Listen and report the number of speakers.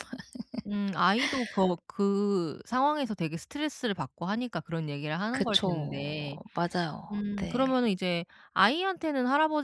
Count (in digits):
2